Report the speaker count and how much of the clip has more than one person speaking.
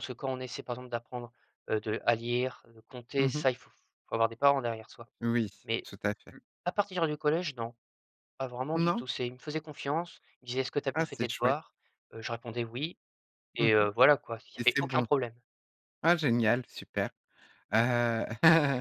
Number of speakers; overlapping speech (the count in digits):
2, about 10%